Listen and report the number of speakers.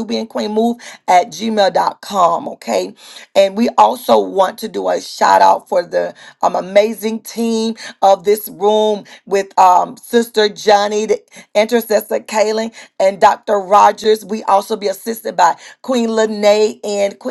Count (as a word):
one